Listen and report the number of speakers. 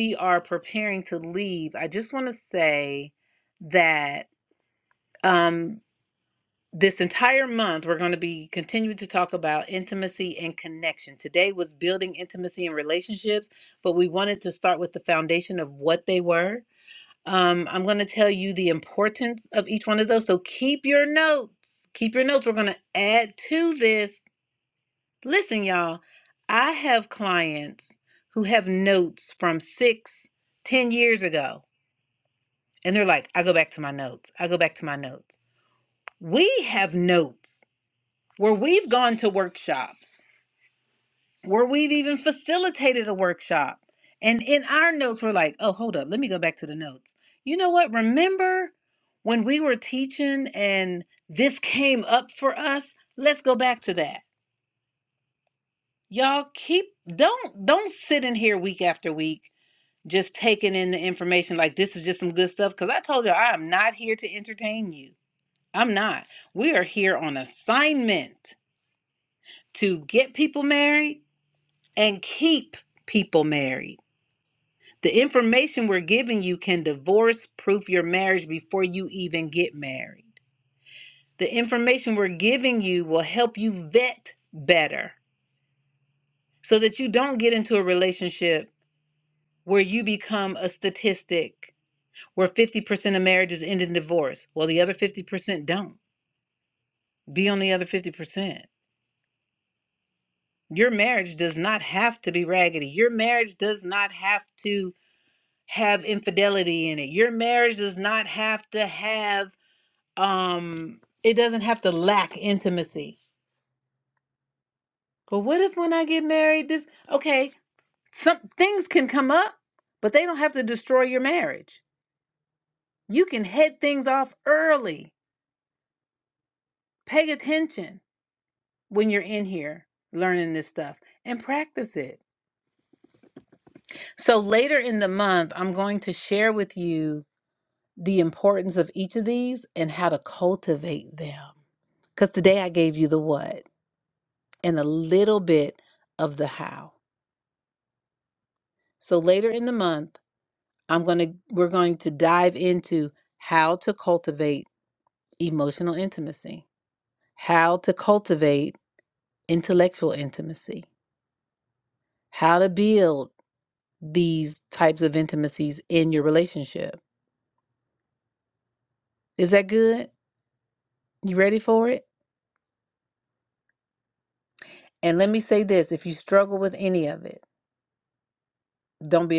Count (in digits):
1